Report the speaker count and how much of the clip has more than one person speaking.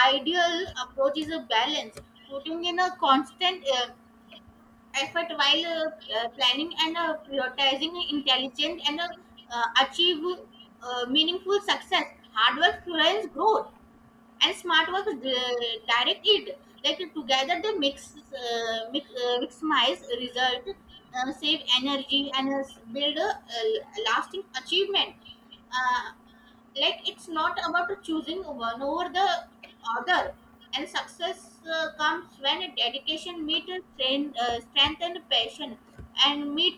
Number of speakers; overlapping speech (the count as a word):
one, no overlap